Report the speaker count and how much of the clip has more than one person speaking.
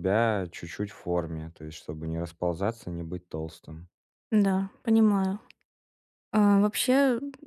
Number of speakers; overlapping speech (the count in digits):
2, no overlap